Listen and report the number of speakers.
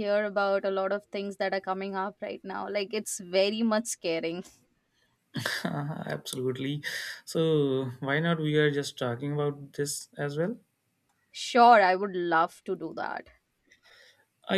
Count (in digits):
2